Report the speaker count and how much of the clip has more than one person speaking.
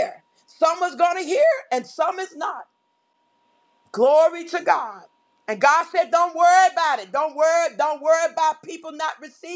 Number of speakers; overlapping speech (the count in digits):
1, no overlap